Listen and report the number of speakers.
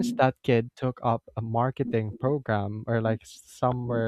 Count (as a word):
one